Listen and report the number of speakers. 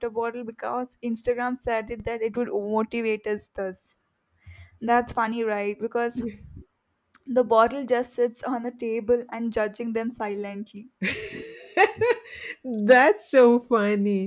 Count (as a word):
two